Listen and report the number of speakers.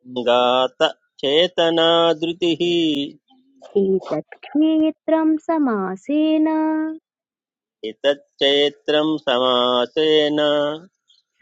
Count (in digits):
2